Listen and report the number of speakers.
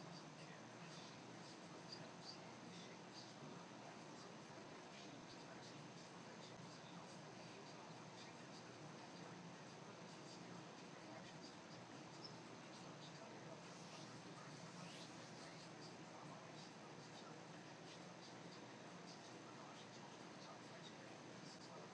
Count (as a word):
zero